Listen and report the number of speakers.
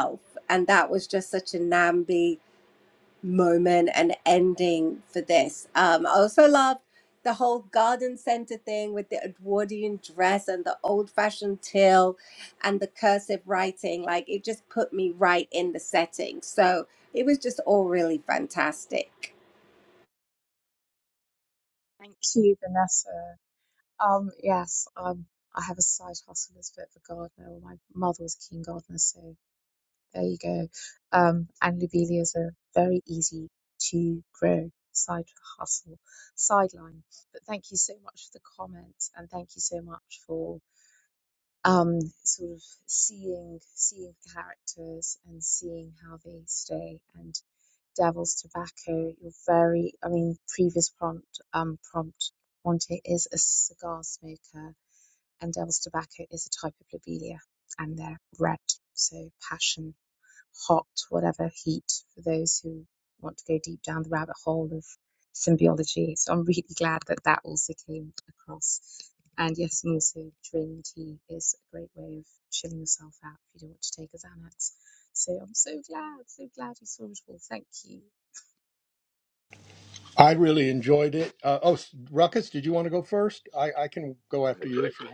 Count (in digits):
3